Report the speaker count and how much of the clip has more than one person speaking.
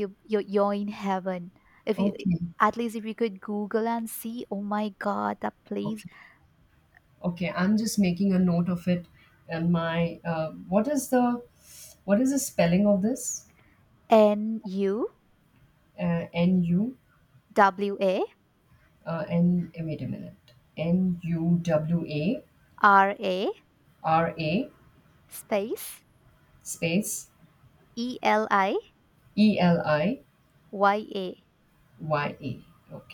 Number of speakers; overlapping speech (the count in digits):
2, about 1%